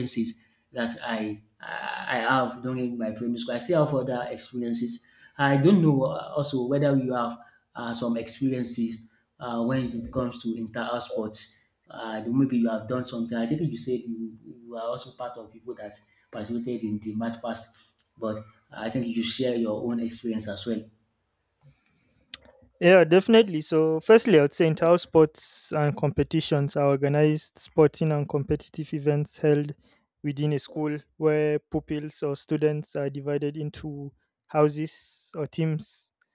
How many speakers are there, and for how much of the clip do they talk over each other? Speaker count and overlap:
2, no overlap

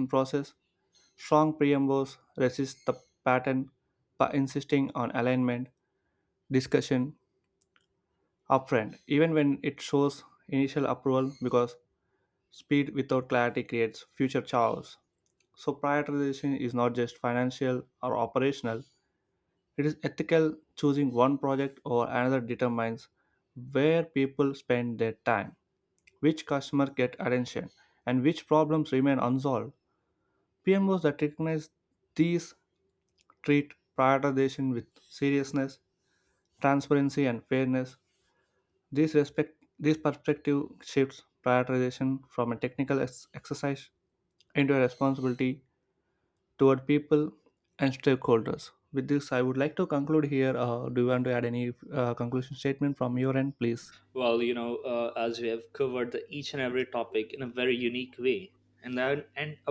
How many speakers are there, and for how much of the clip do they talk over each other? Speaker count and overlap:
2, no overlap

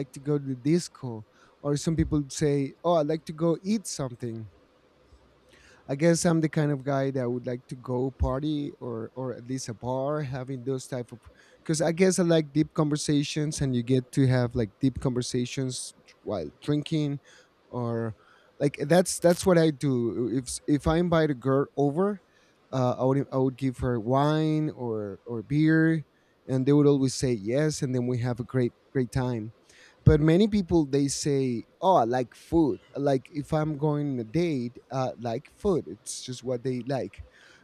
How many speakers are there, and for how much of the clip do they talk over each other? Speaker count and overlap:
1, no overlap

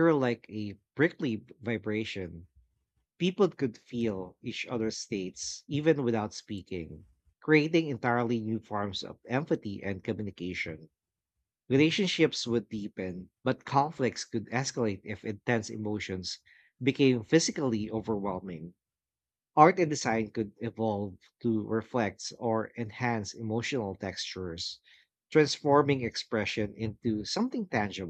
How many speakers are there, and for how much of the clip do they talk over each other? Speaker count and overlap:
1, no overlap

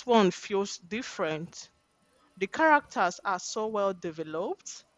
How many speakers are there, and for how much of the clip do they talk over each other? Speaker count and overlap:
1, no overlap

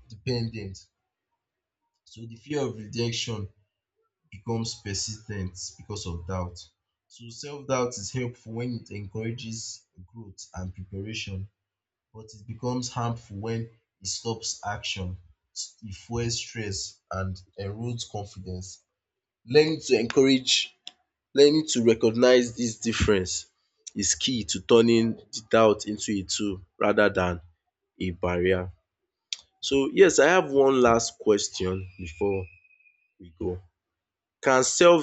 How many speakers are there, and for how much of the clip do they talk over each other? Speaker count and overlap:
1, no overlap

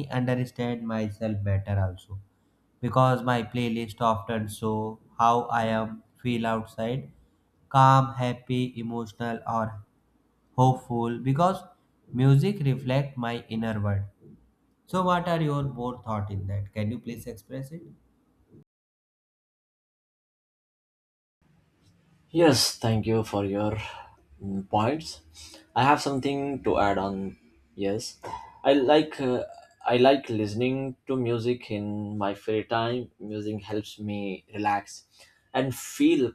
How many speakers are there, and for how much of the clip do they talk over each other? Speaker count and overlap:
2, no overlap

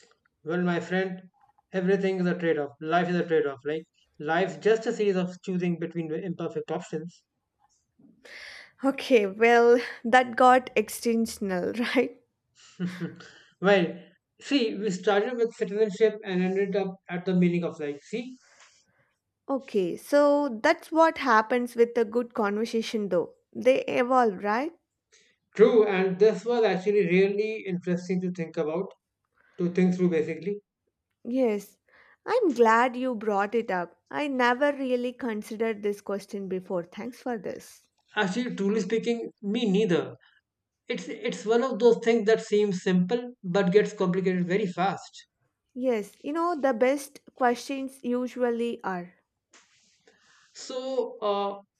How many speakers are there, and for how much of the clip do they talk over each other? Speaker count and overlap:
2, no overlap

